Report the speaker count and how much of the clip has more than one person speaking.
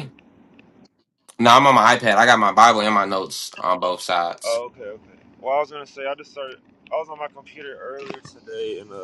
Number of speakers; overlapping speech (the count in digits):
2, under 1%